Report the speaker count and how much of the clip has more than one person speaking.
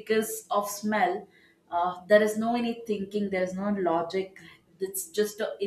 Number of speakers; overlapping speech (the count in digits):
1, no overlap